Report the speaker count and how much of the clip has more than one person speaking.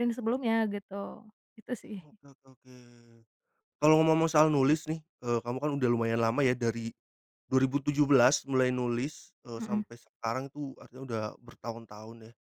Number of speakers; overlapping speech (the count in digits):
2, about 2%